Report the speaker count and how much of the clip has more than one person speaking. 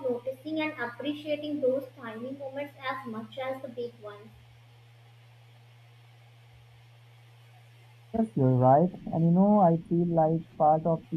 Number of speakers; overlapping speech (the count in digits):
2, no overlap